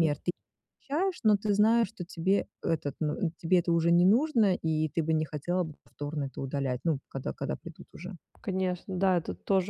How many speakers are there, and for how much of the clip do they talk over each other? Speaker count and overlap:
2, about 1%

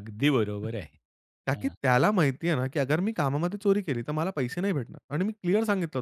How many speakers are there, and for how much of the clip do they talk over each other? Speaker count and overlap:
2, about 3%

